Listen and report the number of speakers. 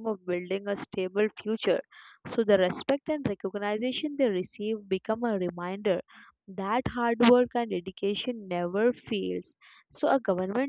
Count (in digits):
1